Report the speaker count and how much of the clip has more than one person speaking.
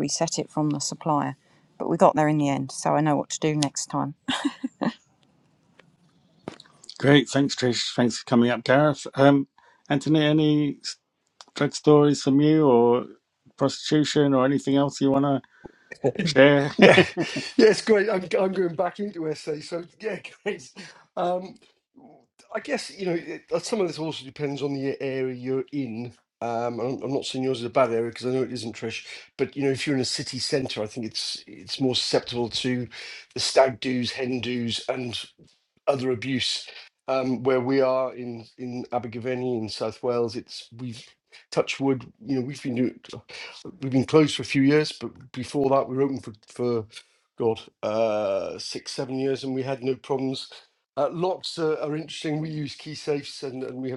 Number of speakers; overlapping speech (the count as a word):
three, no overlap